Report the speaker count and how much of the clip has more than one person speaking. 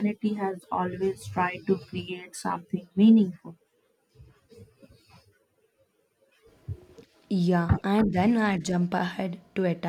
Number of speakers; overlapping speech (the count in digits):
2, no overlap